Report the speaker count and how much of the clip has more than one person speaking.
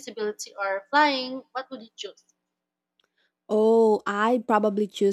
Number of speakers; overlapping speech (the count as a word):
two, no overlap